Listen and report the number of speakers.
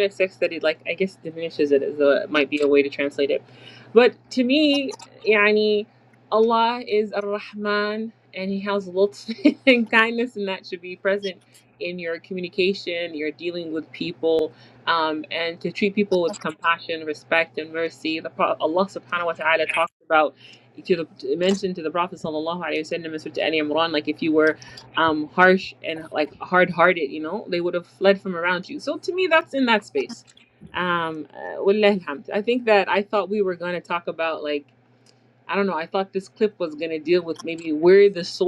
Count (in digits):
1